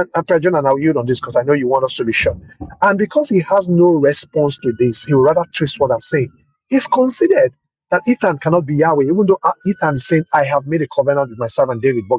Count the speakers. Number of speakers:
1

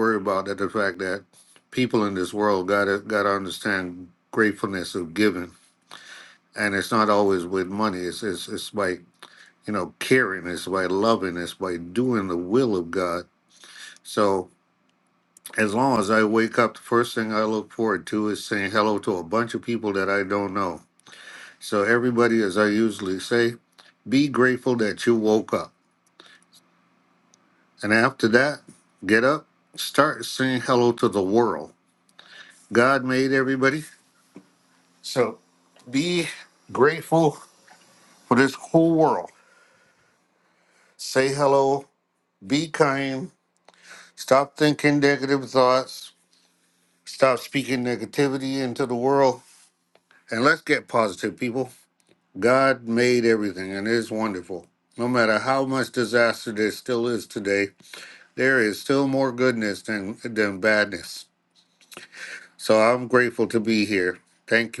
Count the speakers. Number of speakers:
1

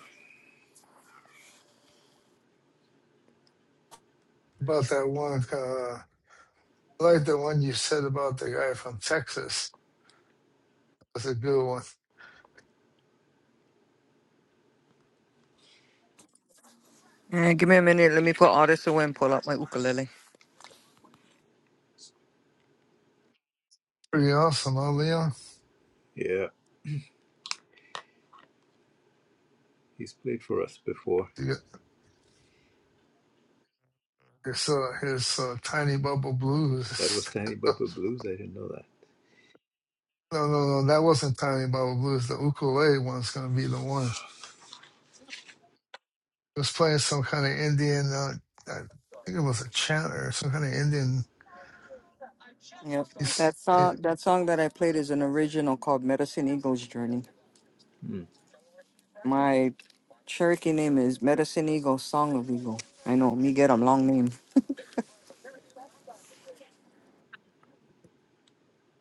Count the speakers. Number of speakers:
3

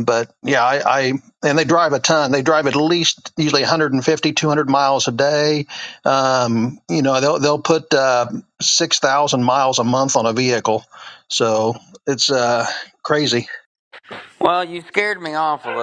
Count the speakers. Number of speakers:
2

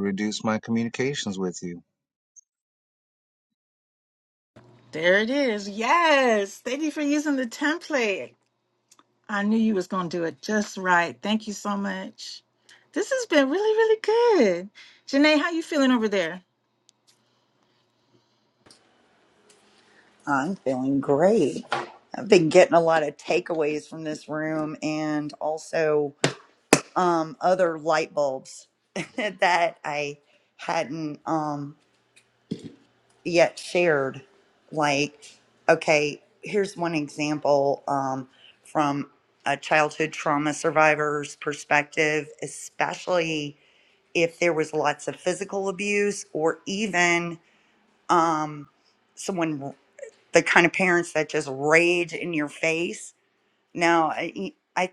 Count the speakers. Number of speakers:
3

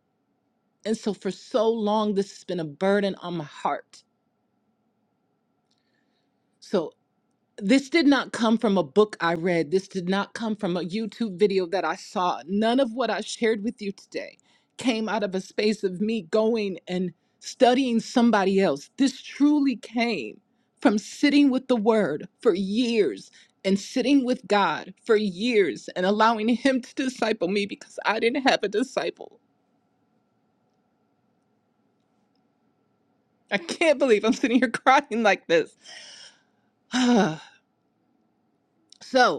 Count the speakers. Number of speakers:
1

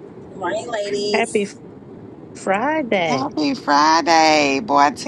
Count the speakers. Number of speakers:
3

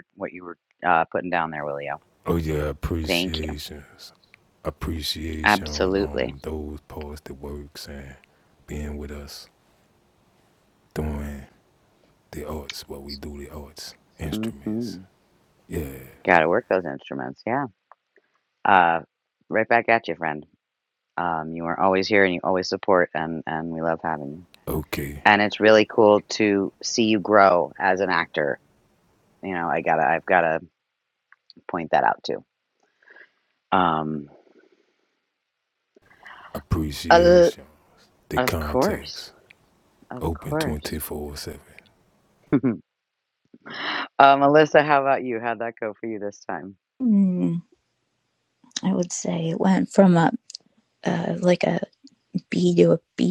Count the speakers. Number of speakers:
3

